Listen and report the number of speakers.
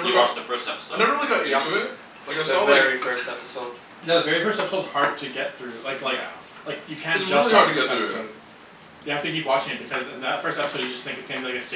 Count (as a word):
four